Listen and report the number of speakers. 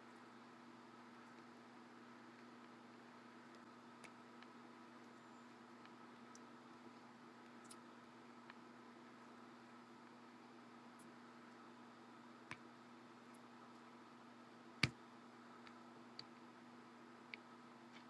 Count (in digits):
0